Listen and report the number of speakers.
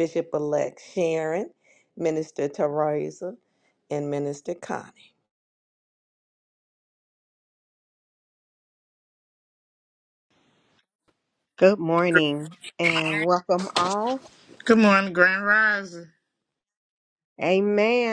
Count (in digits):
3